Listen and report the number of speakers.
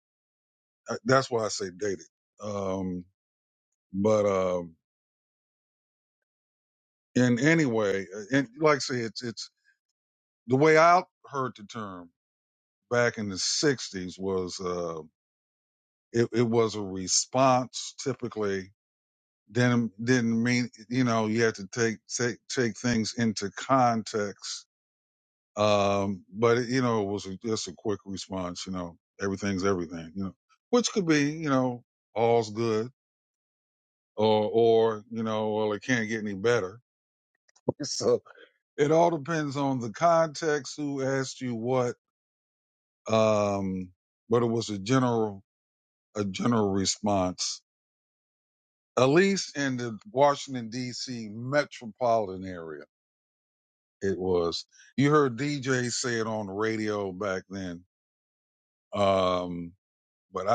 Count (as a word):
one